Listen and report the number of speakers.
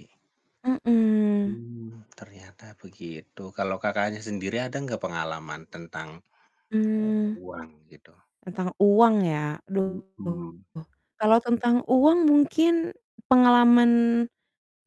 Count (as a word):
two